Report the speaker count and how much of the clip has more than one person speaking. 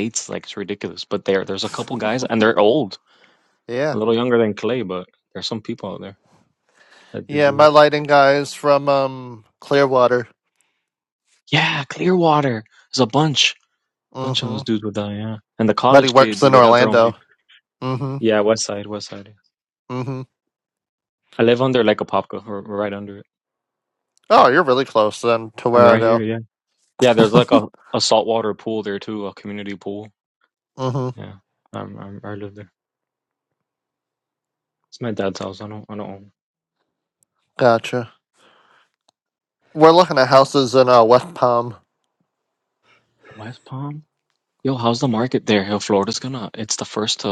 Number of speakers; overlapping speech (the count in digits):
2, about 5%